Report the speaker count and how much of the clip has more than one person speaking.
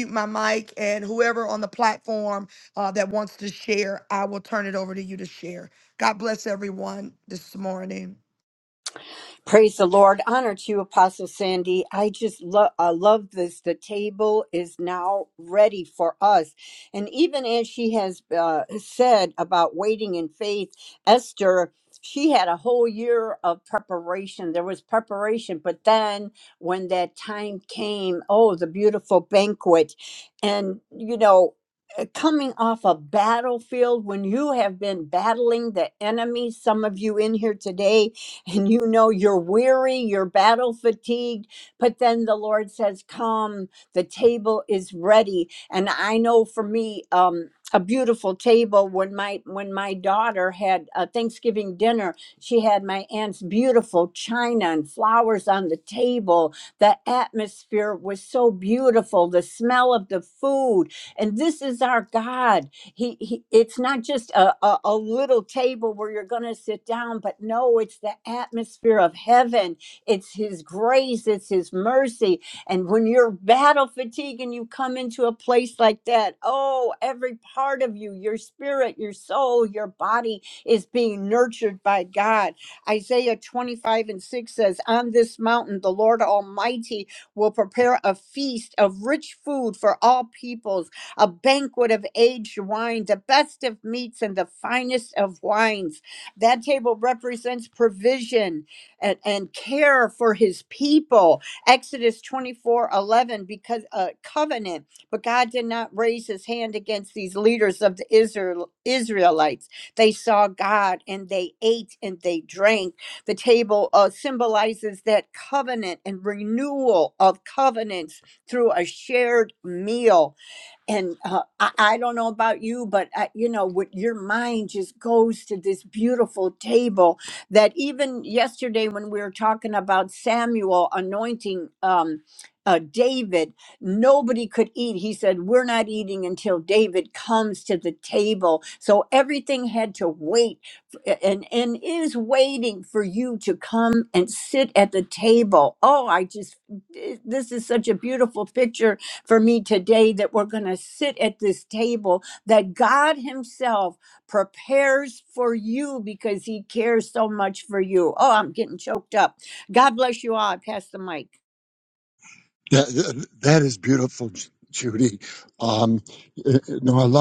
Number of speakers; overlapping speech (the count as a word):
three, no overlap